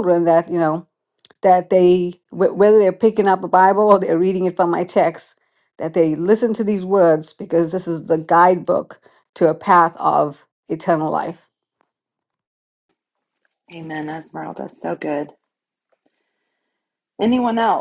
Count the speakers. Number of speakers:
two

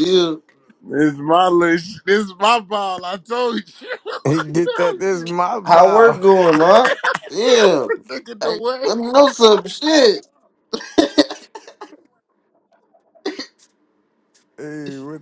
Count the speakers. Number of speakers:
three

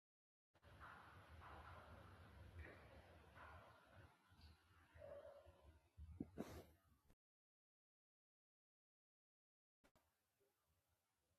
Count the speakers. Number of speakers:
zero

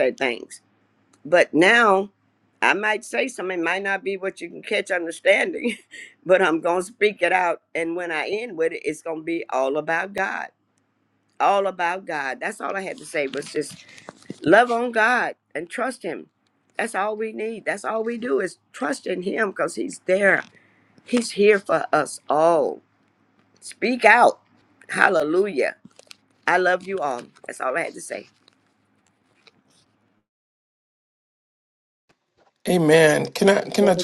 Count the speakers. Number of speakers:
two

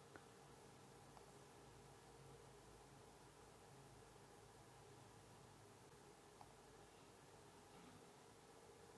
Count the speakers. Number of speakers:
zero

